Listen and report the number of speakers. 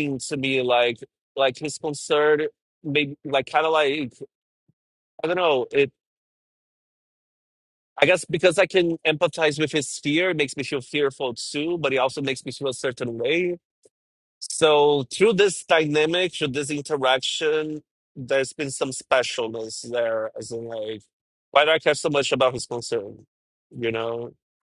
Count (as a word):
one